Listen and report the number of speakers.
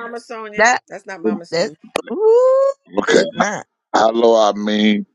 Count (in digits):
3